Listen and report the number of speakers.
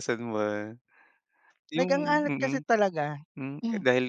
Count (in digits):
2